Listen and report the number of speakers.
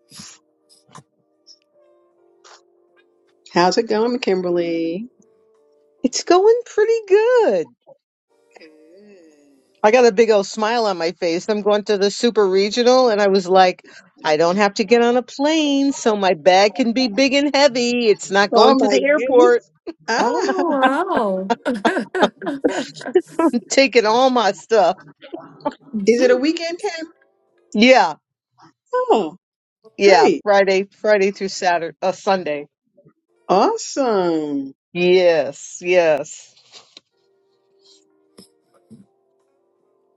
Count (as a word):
three